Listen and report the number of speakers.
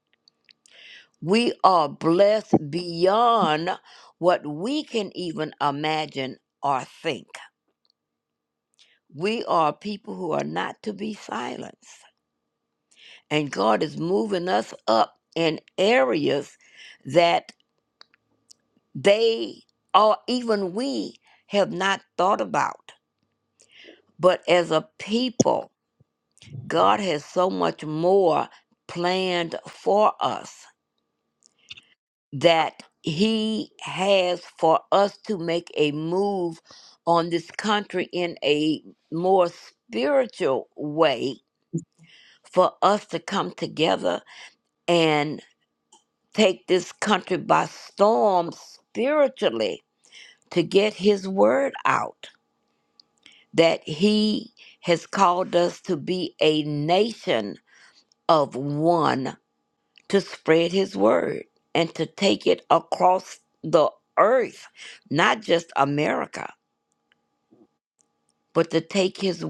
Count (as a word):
one